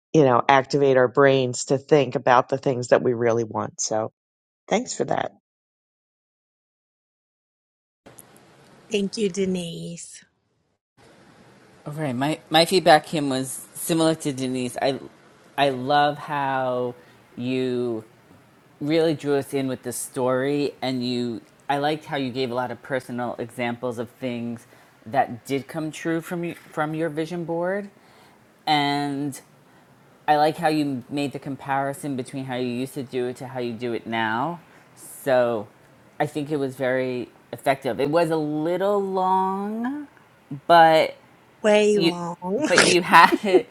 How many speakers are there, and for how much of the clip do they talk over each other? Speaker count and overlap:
three, about 1%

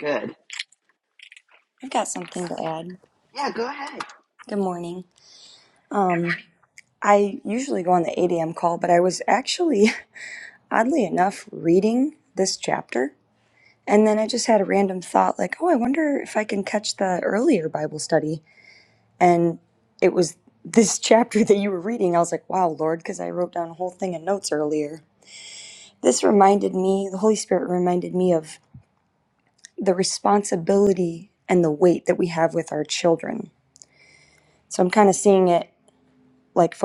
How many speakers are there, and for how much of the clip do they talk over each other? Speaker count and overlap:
two, no overlap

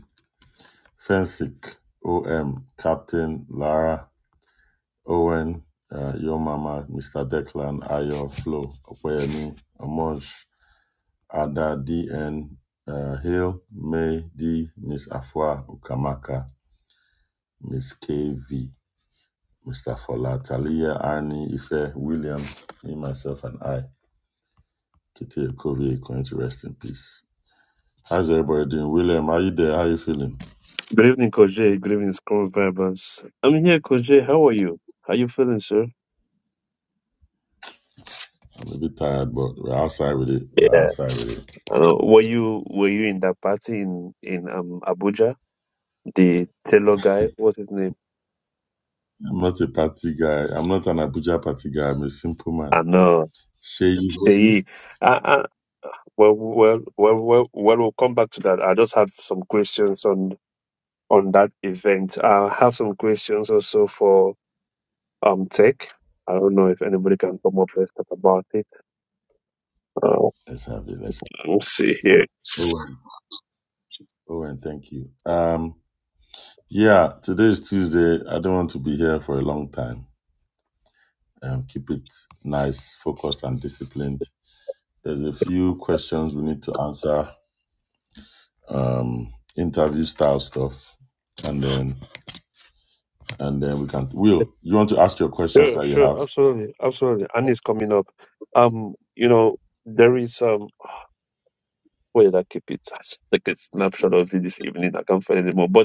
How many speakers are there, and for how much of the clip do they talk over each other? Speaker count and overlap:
two, about 1%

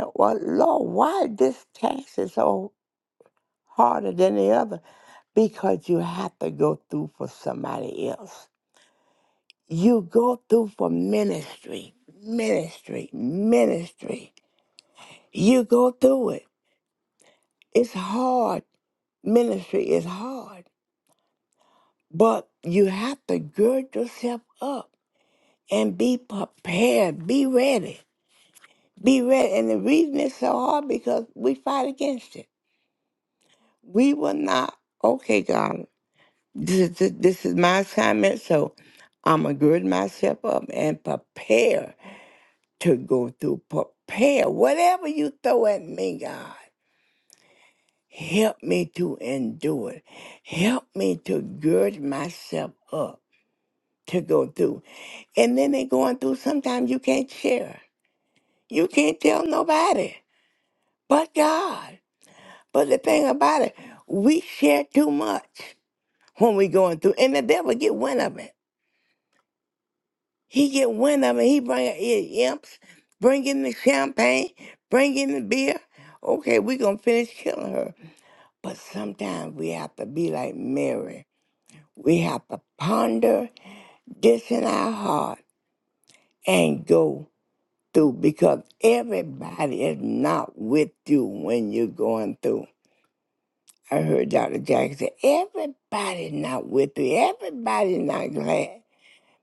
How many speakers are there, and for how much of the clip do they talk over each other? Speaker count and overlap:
one, no overlap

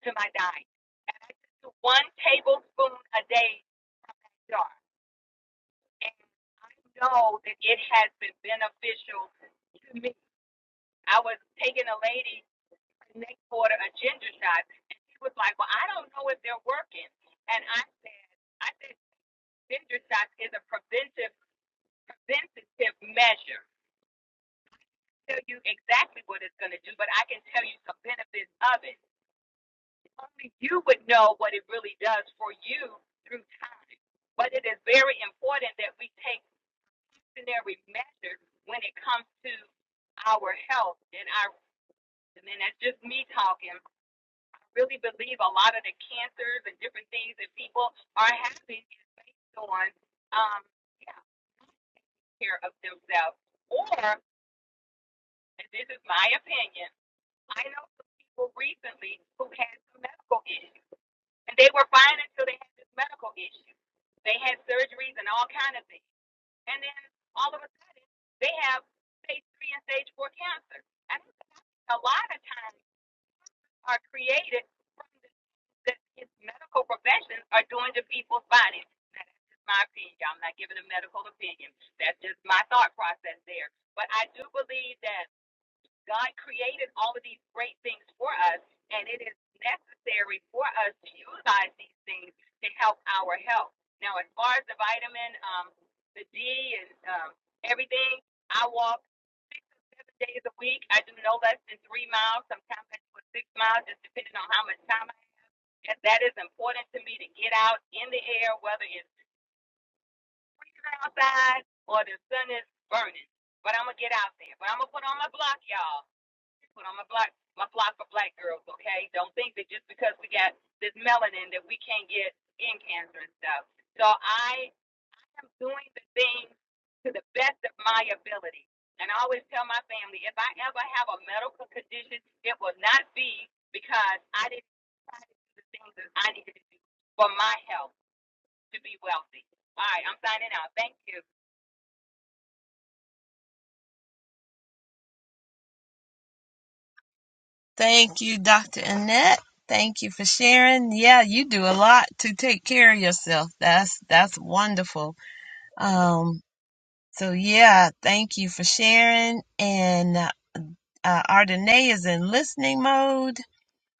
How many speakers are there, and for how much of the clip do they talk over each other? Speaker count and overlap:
two, no overlap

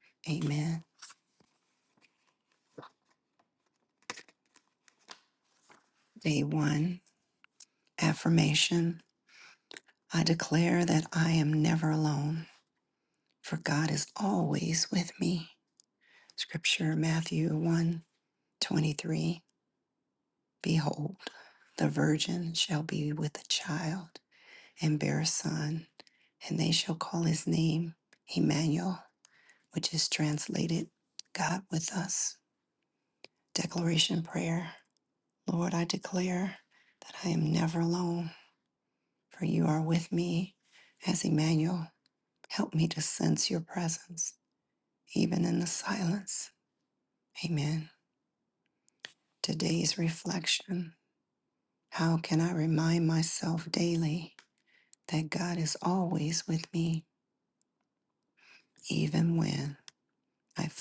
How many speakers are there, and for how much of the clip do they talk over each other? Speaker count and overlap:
one, no overlap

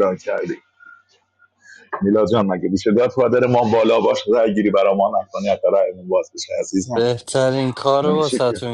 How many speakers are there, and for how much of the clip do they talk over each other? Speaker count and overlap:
two, about 7%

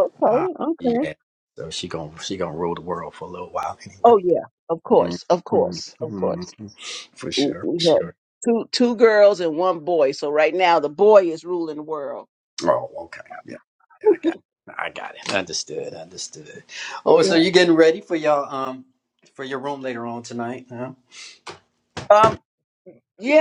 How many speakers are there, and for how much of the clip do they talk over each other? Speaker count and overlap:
two, about 11%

